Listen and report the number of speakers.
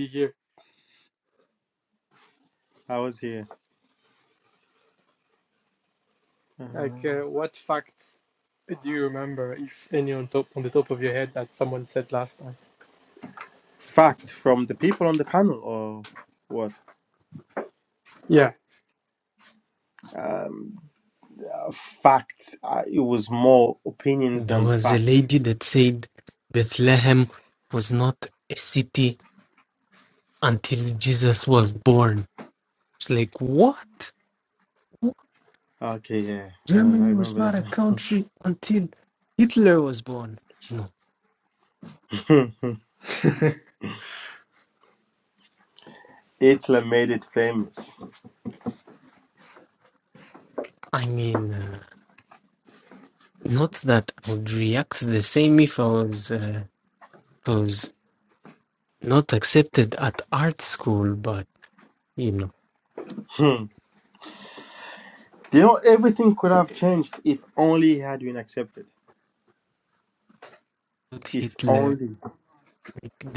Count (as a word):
three